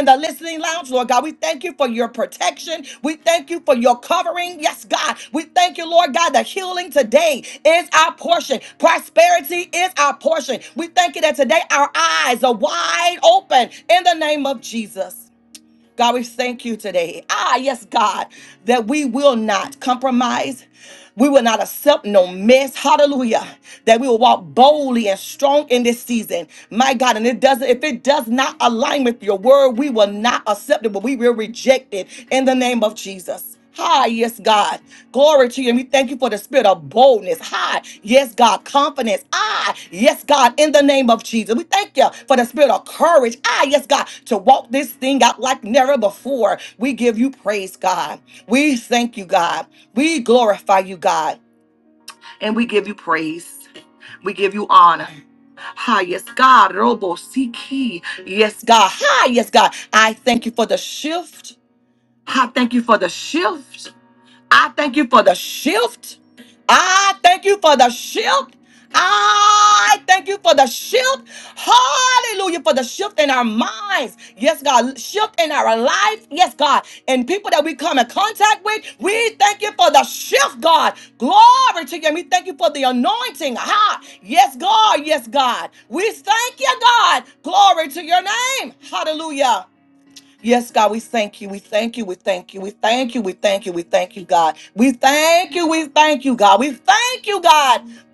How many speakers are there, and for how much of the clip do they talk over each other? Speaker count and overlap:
1, no overlap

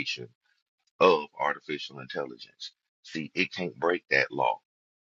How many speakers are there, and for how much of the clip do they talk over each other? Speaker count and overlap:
1, no overlap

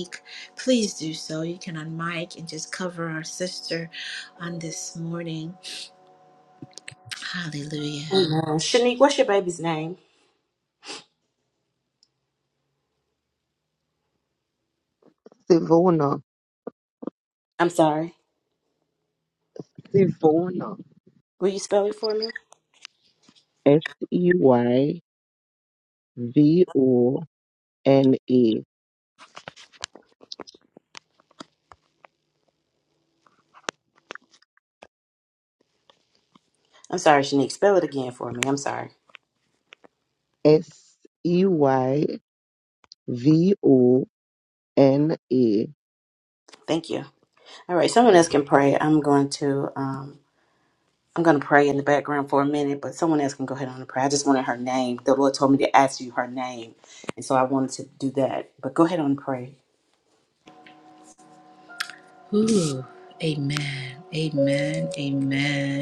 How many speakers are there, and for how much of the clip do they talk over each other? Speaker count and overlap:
3, under 1%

